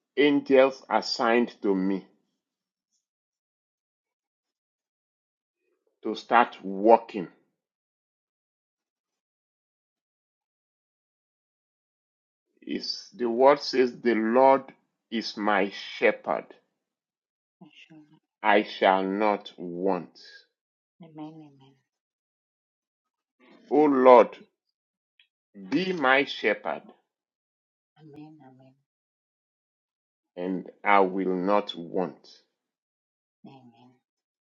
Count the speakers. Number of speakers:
2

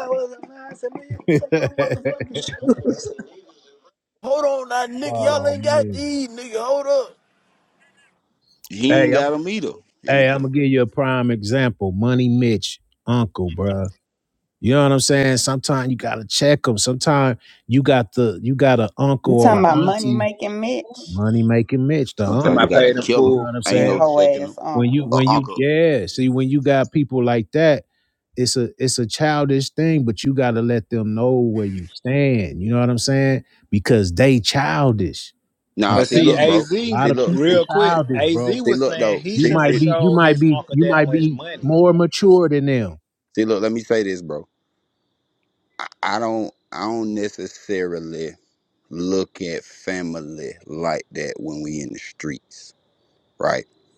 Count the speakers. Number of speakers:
5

